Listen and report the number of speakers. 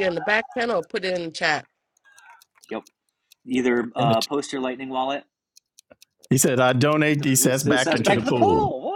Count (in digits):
3